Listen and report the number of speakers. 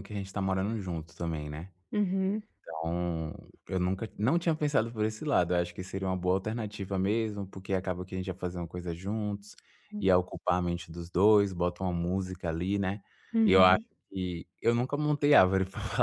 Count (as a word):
two